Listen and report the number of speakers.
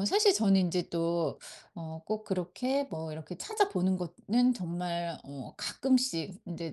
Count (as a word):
one